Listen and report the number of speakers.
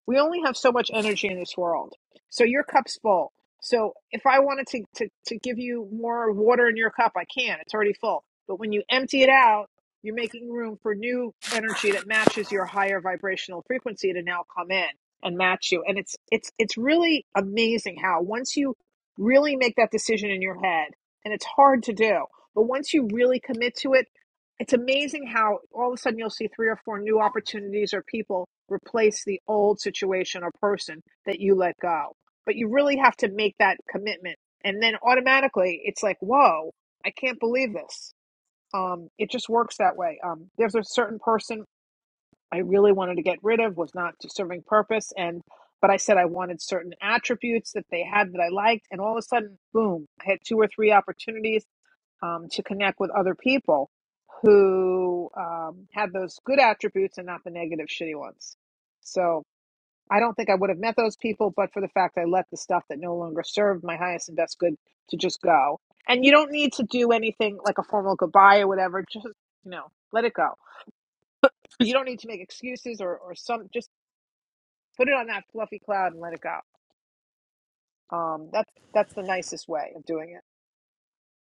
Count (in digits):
1